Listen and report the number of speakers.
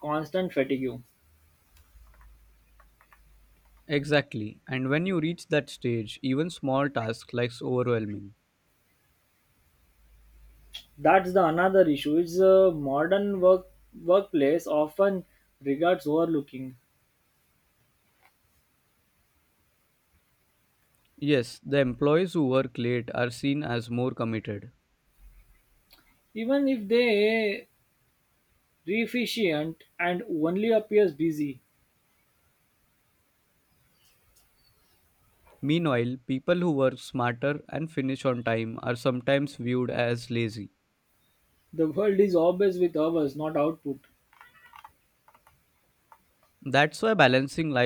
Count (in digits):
2